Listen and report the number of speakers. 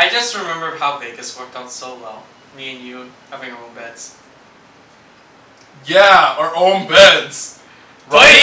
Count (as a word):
two